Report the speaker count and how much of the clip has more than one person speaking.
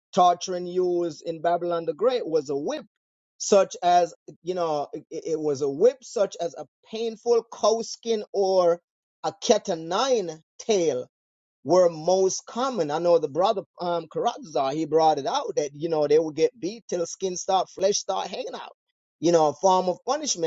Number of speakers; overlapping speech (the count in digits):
1, no overlap